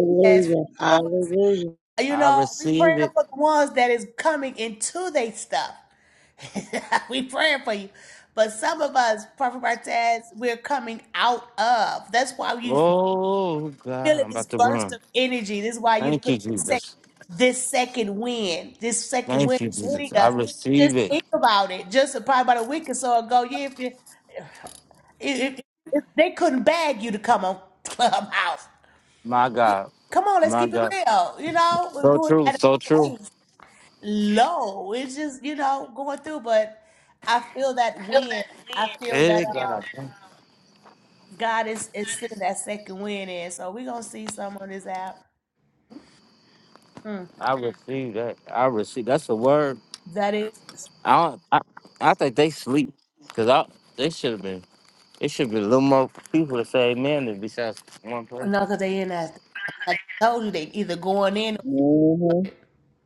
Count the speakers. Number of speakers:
3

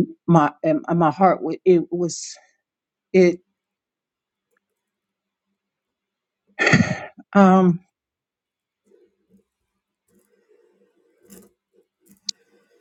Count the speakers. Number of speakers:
1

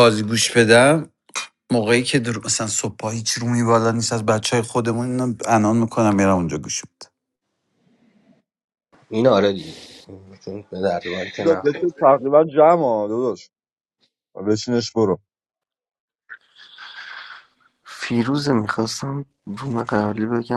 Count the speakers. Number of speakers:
4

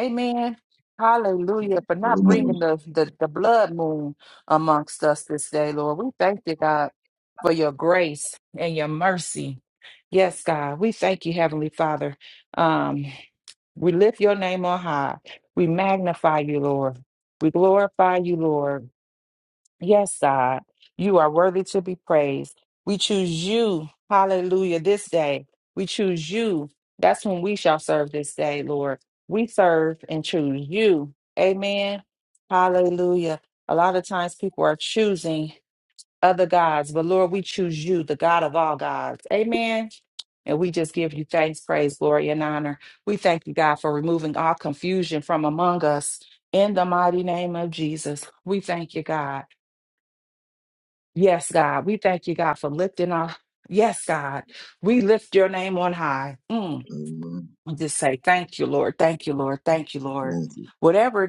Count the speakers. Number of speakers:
2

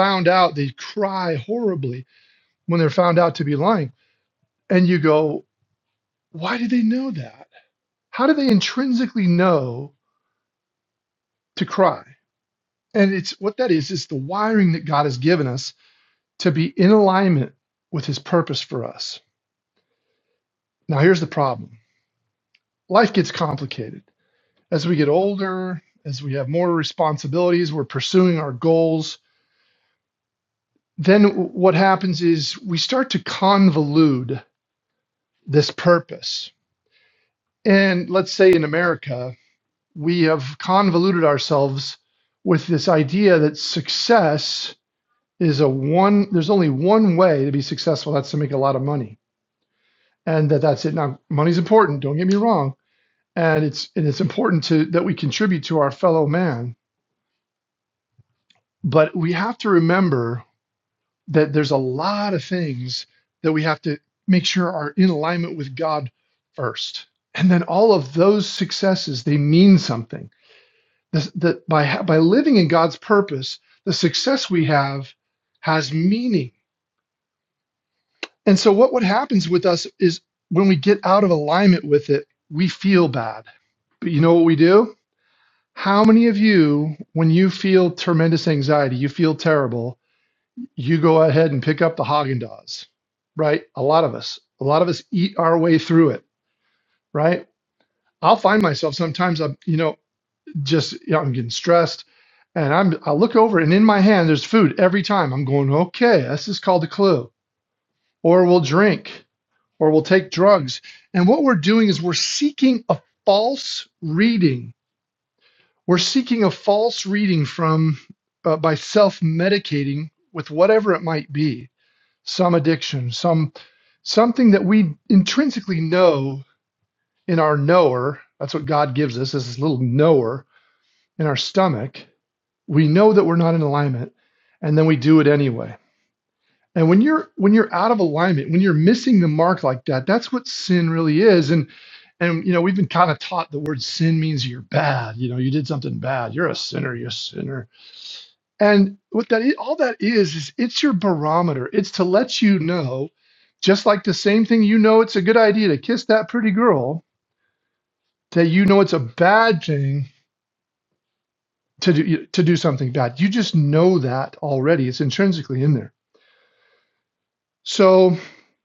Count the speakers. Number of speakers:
1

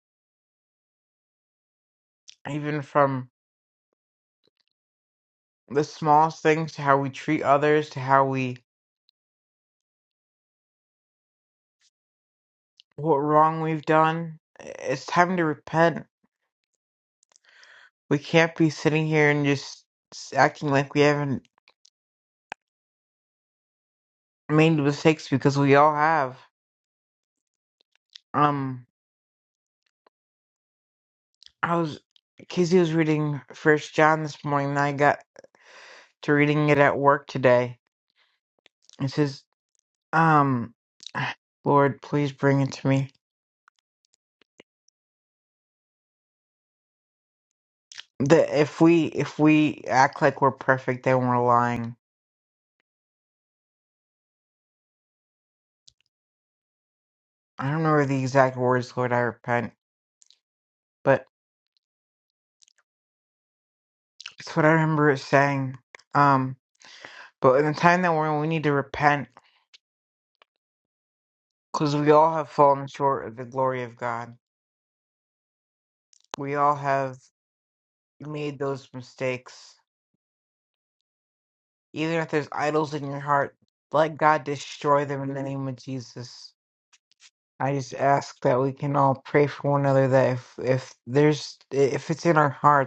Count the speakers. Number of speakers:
1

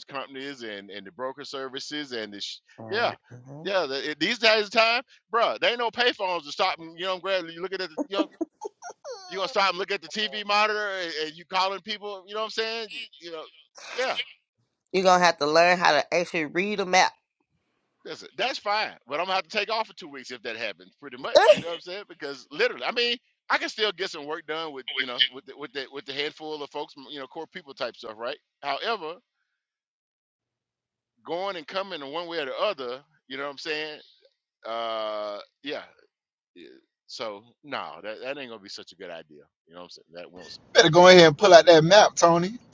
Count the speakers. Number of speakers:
3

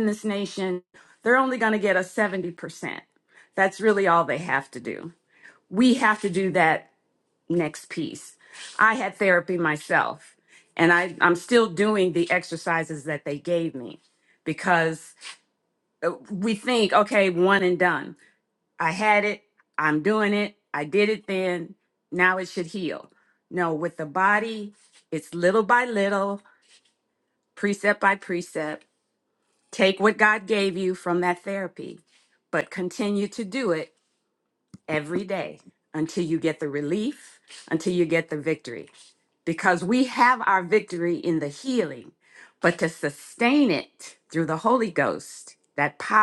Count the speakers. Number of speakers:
1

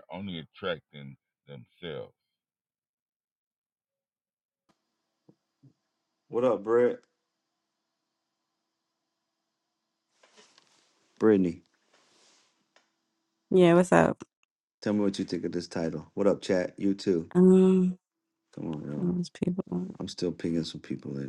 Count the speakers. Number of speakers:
3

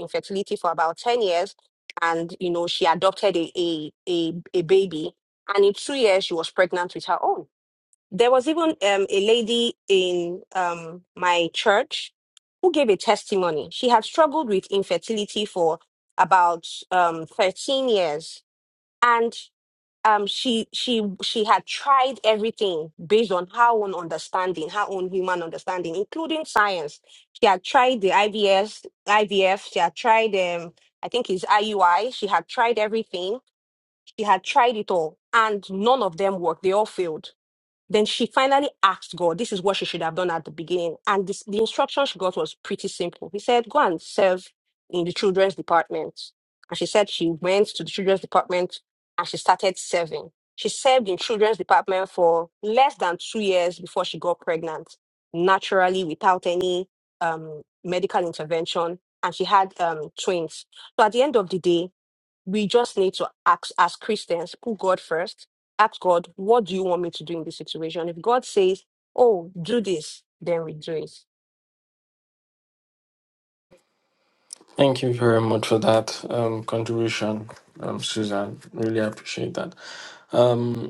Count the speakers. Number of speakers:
2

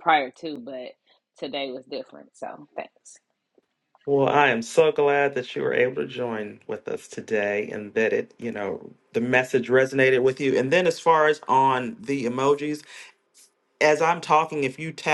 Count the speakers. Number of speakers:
2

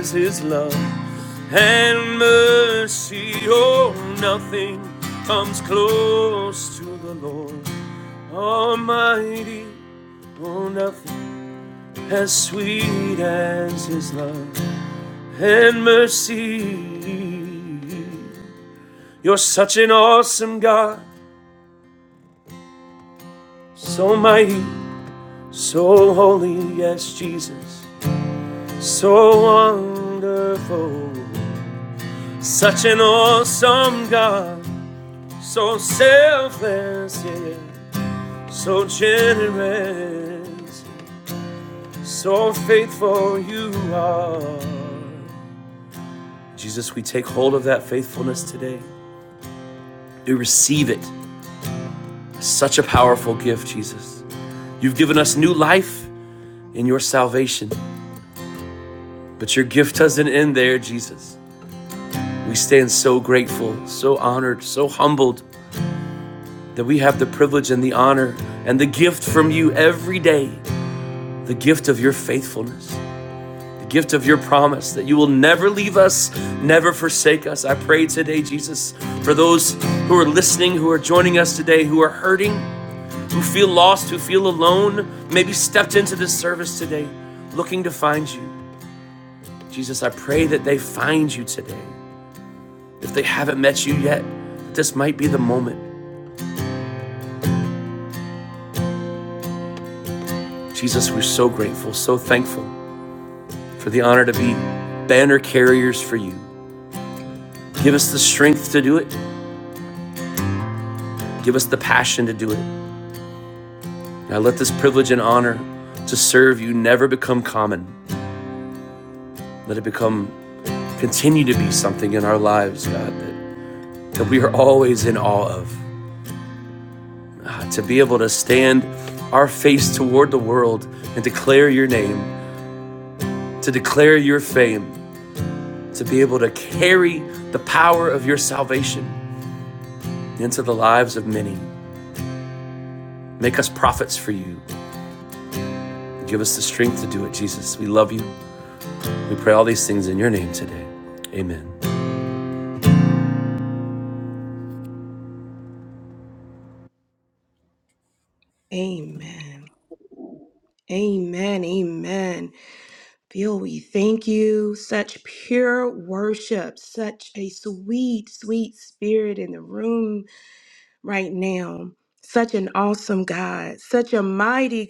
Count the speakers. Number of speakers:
2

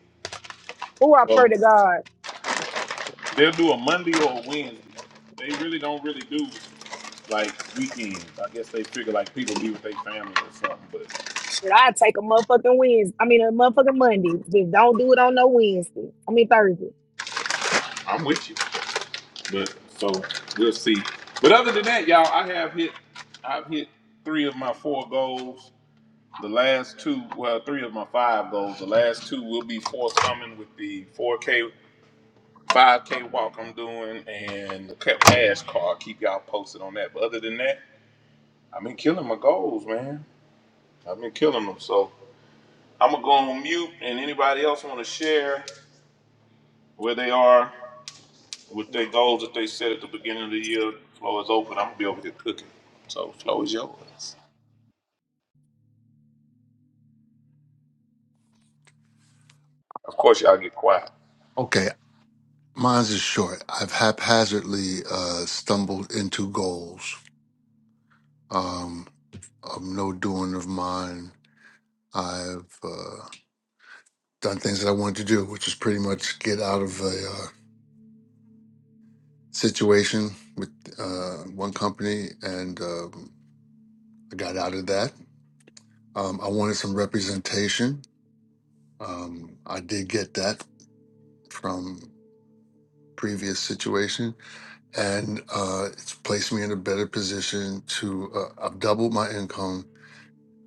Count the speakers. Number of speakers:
3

